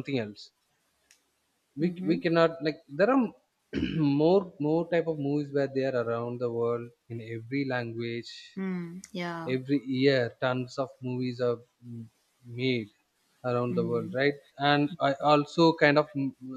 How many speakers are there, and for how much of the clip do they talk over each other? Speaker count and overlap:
2, about 6%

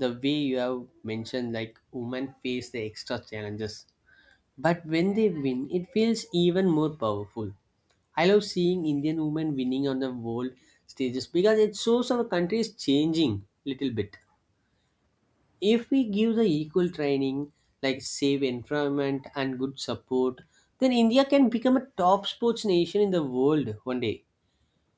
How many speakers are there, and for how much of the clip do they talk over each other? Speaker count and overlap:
1, no overlap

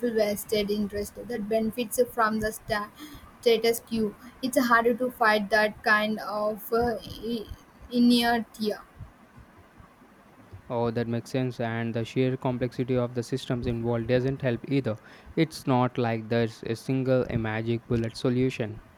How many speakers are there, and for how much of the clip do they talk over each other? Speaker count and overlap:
2, no overlap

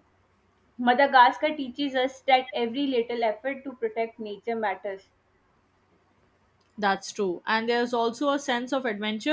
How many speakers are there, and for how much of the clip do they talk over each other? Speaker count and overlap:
2, no overlap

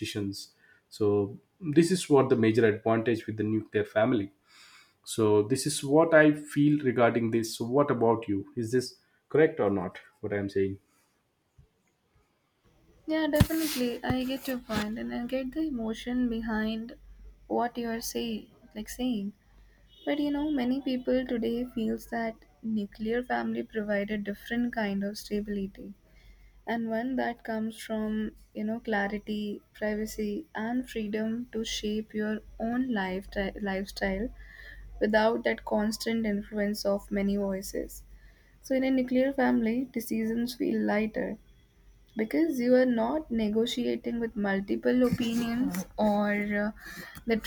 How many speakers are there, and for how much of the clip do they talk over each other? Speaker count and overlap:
2, no overlap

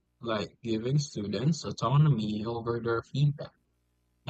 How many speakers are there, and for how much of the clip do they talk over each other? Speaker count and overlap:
1, no overlap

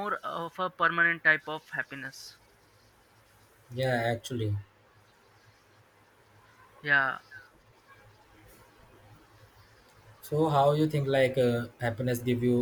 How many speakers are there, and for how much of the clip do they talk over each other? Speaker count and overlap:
2, no overlap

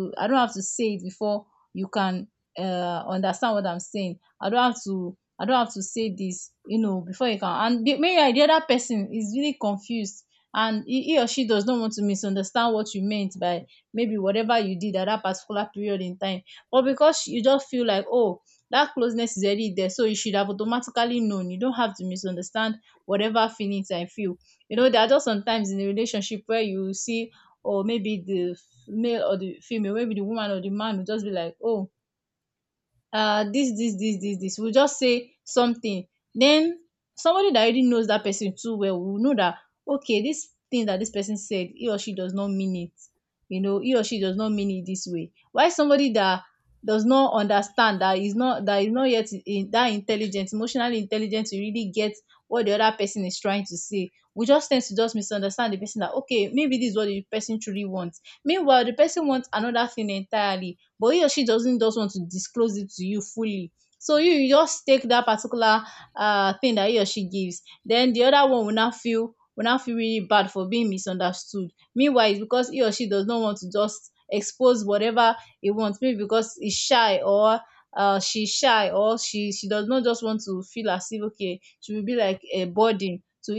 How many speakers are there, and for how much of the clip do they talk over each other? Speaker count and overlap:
1, no overlap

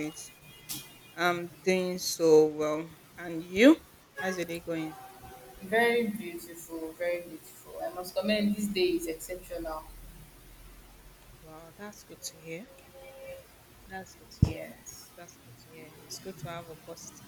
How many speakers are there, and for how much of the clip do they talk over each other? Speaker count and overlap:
2, about 1%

